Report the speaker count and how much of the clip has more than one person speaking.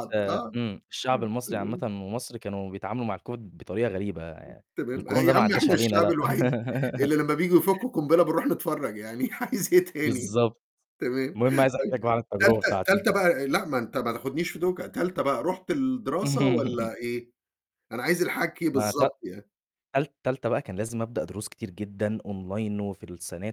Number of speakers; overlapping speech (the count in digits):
2, about 13%